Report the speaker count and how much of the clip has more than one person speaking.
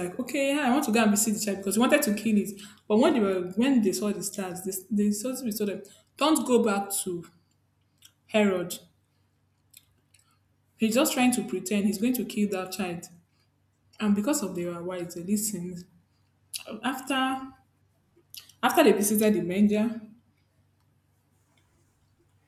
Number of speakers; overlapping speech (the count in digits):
1, no overlap